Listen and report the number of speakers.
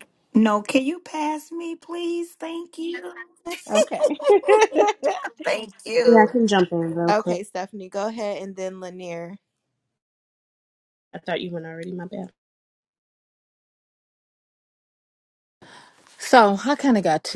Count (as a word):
four